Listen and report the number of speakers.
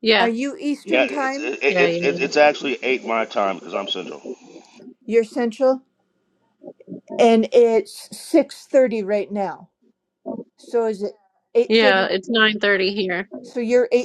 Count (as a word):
three